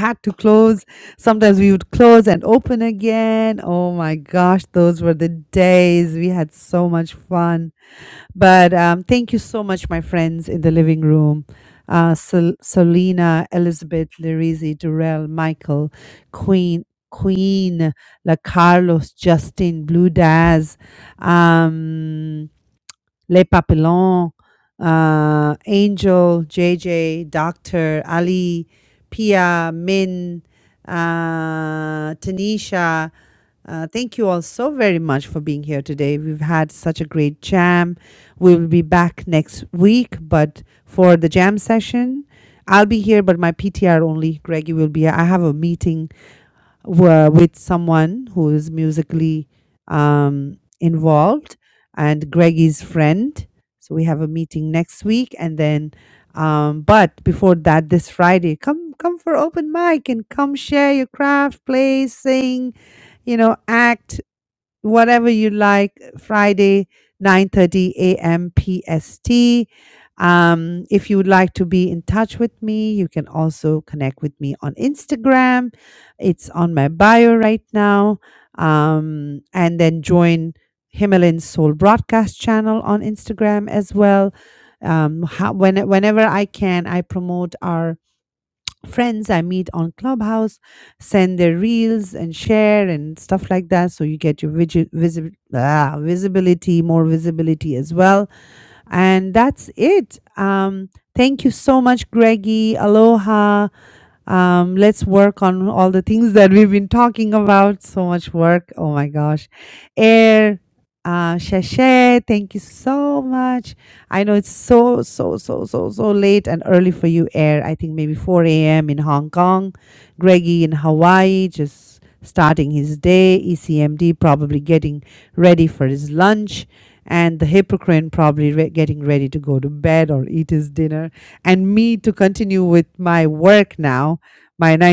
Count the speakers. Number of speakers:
1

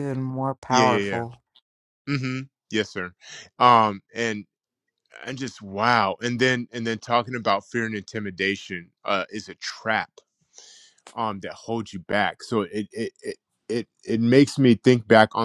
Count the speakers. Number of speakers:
2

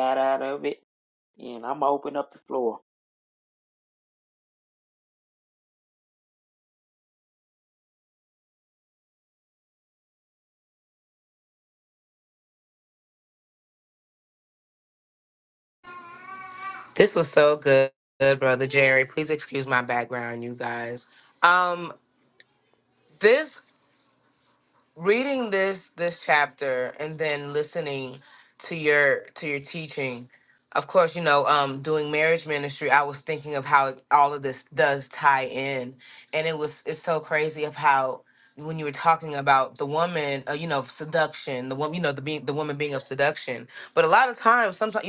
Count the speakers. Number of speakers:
2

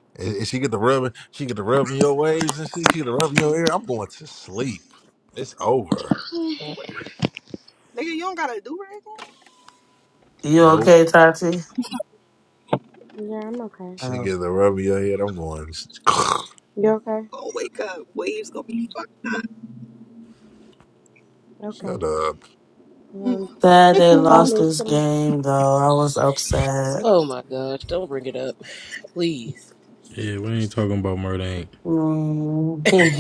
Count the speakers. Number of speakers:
6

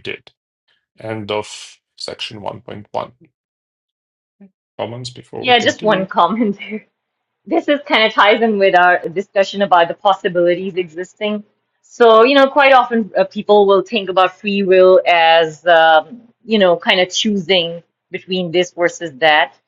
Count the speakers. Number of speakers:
2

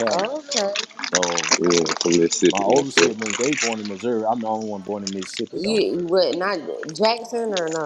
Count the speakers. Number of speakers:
3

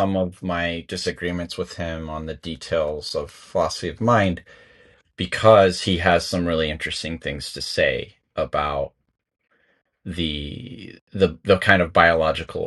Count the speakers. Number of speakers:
1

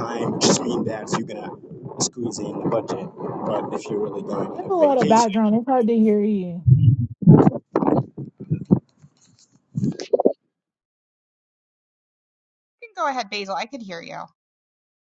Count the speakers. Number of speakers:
3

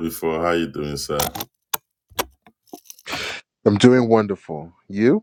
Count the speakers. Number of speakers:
2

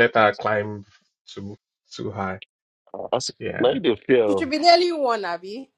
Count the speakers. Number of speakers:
3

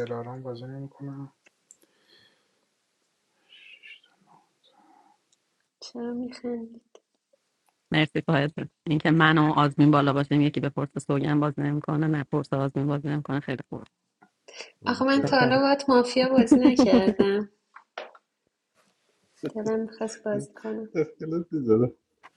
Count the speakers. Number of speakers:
4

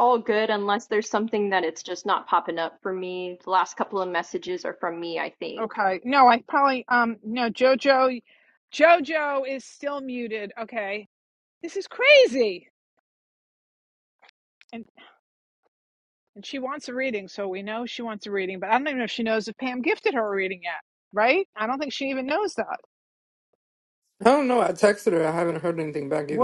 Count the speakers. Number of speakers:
3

